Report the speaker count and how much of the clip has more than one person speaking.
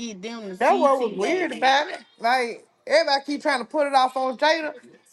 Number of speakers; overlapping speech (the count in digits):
2, about 21%